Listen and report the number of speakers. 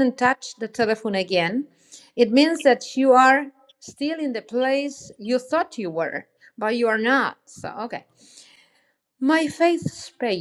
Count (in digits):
1